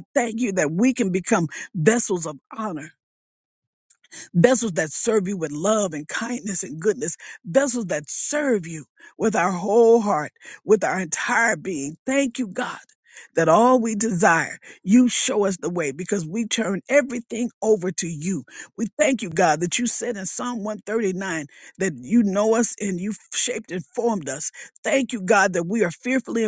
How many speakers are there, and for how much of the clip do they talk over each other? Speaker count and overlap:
one, no overlap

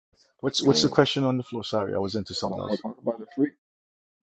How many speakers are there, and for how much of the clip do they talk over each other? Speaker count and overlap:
two, about 18%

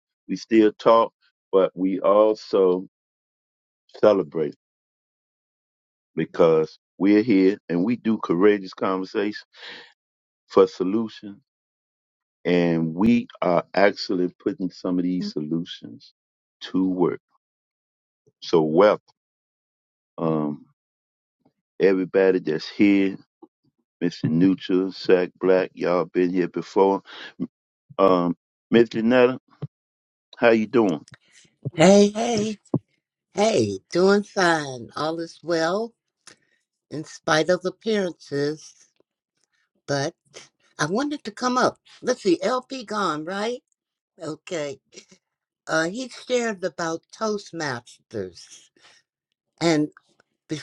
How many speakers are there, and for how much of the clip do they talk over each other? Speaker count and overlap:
two, no overlap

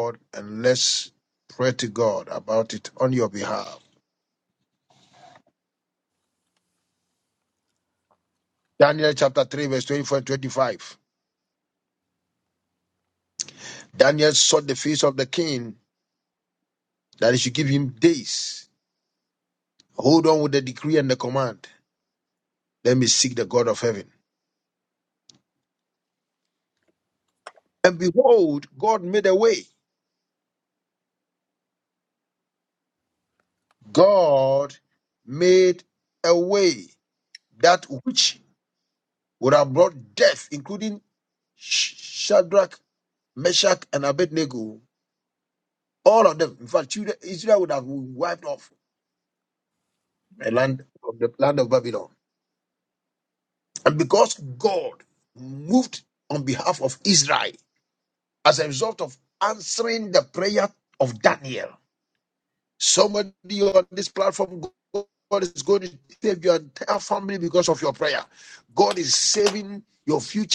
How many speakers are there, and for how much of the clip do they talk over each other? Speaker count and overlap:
one, no overlap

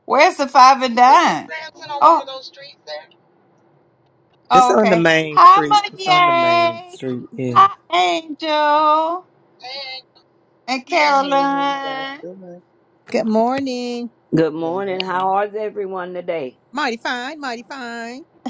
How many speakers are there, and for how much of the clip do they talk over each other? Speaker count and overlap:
six, about 25%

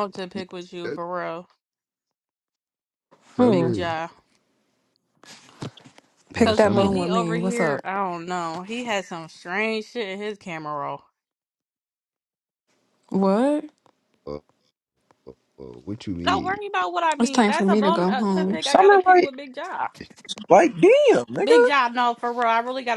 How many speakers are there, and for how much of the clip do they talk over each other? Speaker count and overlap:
four, about 20%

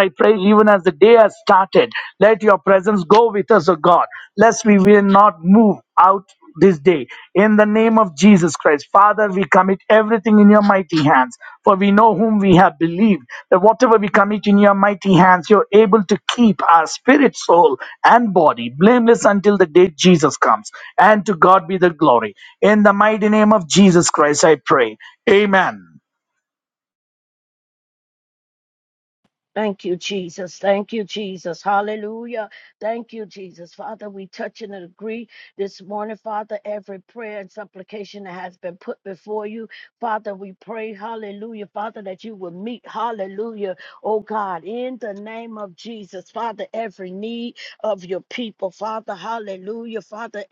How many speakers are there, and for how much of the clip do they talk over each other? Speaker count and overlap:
two, no overlap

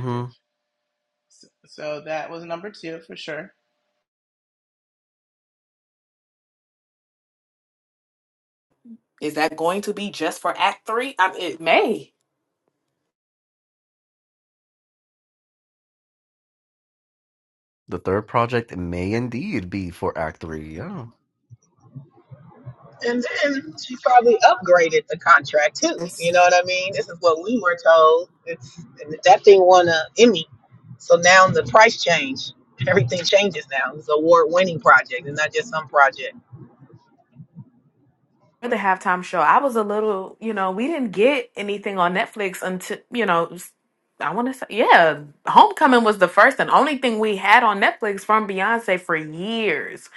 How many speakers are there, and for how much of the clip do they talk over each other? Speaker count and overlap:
four, under 1%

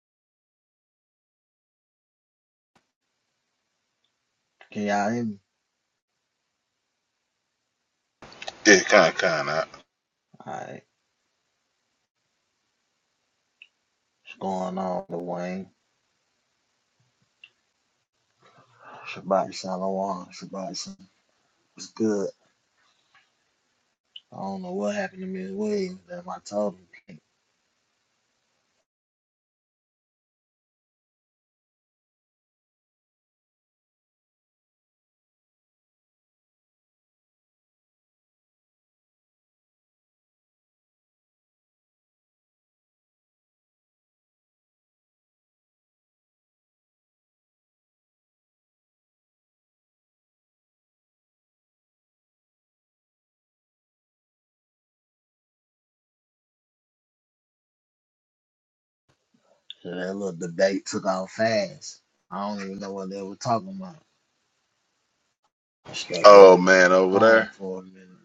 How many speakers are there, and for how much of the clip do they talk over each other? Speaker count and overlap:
two, about 2%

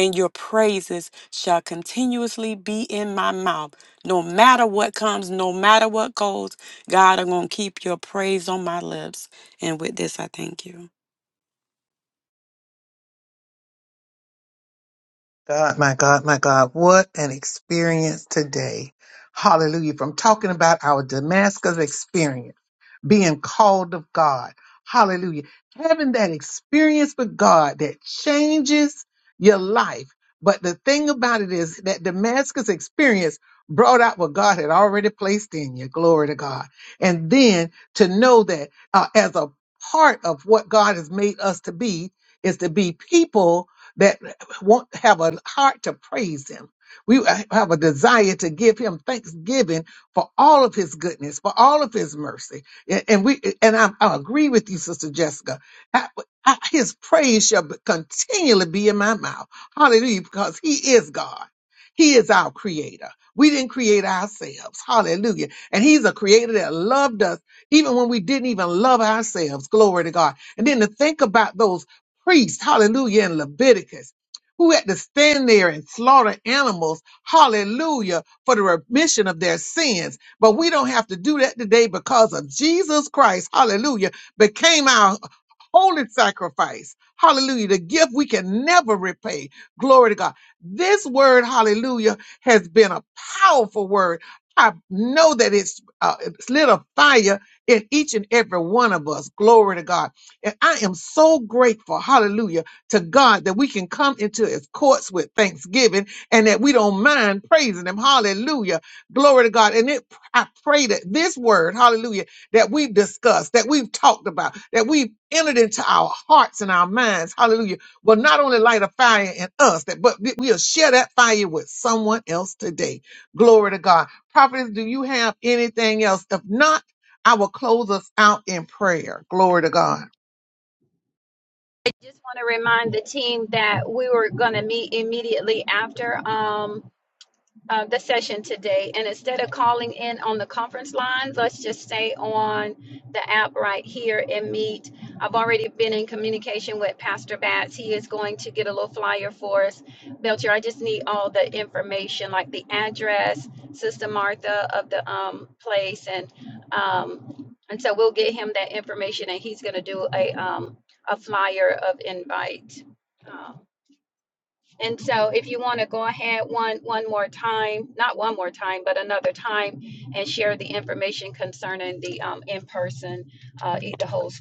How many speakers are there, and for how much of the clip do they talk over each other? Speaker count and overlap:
three, no overlap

